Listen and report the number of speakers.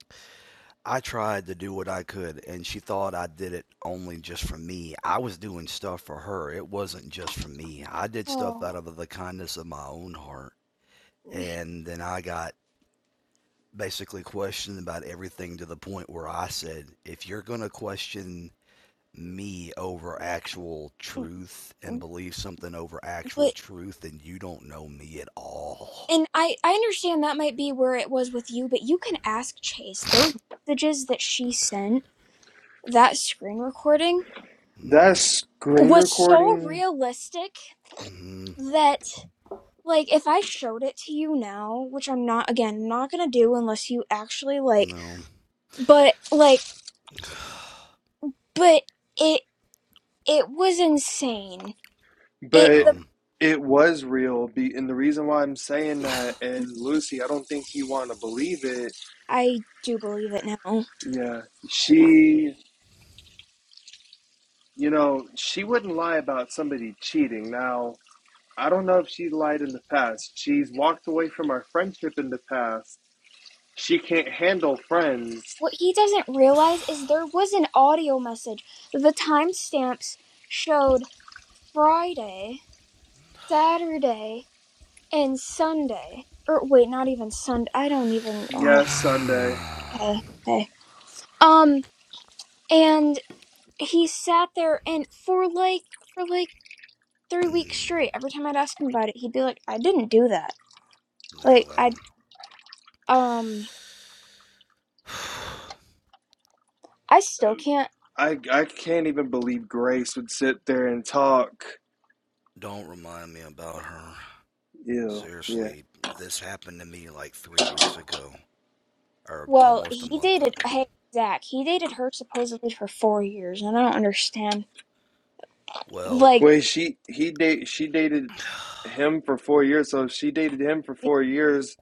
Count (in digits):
3